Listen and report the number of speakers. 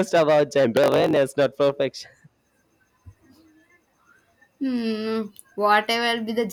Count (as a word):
two